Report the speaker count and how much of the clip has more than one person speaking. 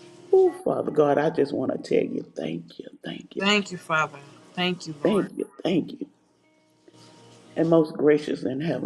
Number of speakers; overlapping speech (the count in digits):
2, about 3%